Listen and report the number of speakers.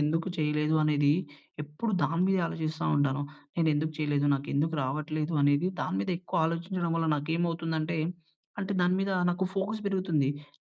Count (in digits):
1